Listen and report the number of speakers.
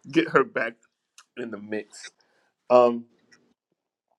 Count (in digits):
1